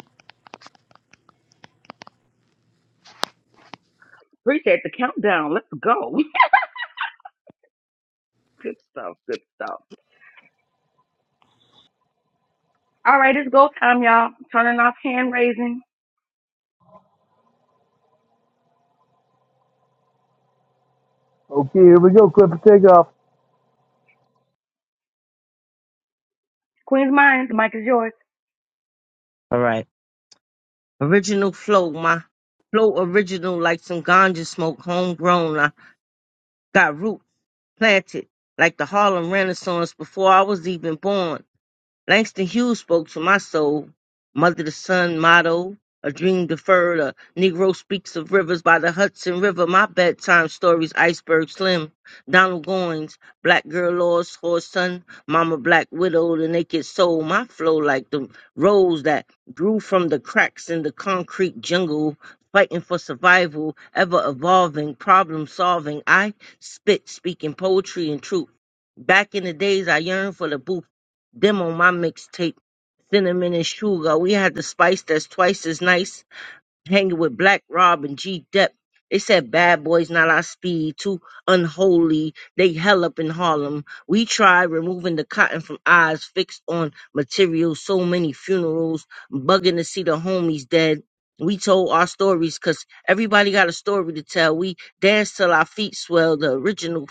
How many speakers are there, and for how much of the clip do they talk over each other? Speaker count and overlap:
3, no overlap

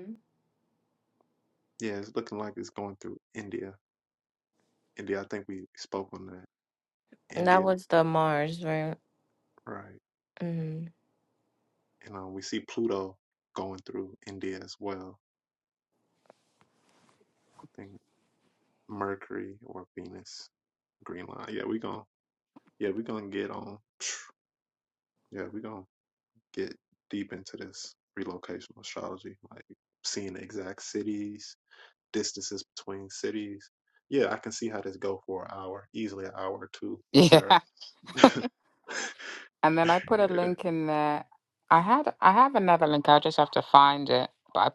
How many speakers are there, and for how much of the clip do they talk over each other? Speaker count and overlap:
3, about 3%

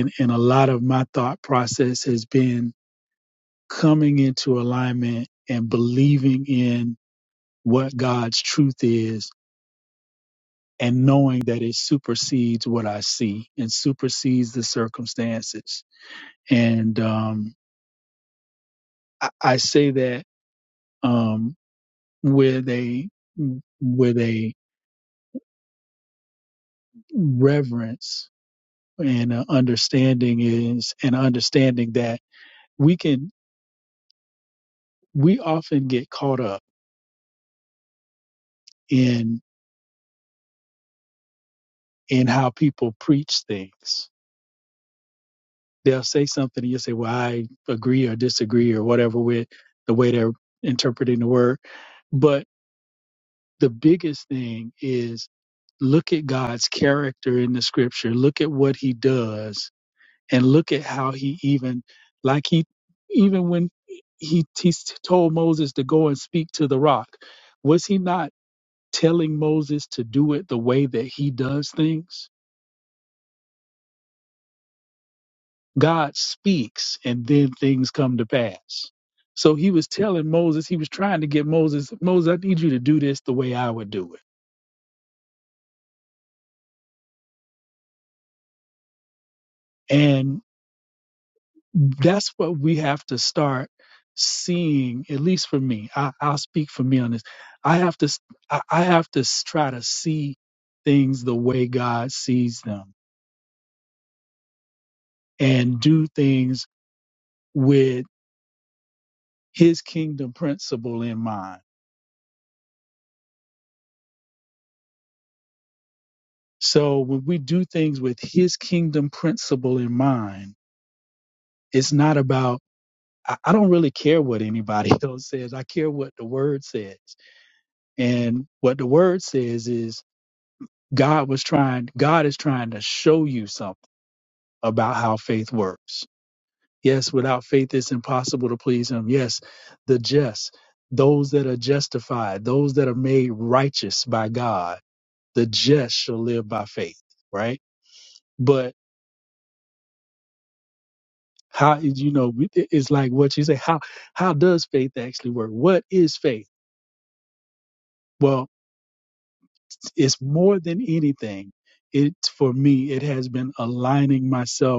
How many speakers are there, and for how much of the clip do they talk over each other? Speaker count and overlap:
1, no overlap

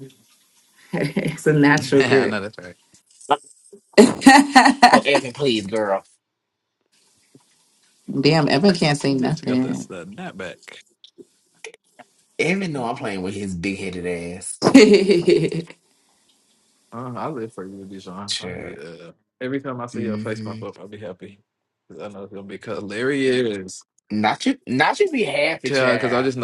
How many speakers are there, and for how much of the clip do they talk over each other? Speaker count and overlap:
3, about 12%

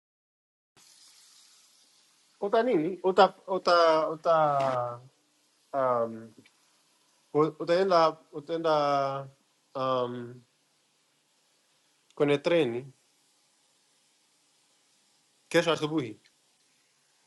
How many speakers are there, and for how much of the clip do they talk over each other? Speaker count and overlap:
1, no overlap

